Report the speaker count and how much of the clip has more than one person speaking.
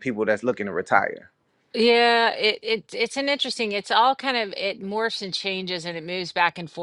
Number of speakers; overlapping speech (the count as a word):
two, no overlap